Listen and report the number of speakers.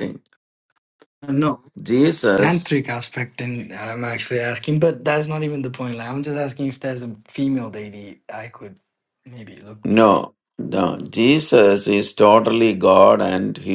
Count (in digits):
2